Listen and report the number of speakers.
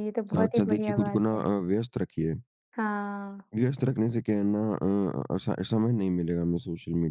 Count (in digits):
2